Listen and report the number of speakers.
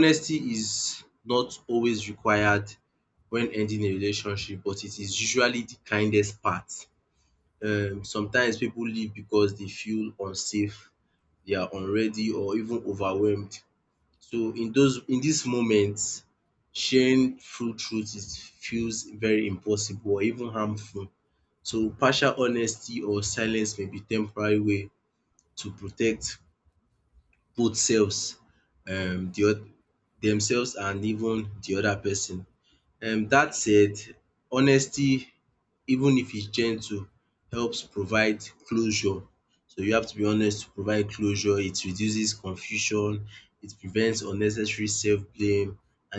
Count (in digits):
1